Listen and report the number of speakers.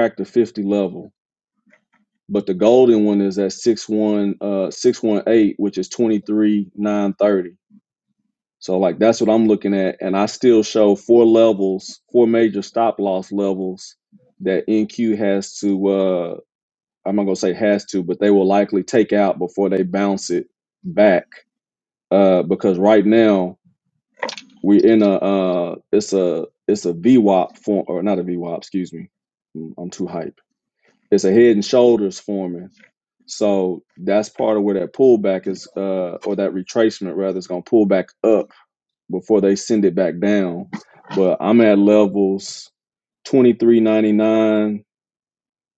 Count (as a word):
one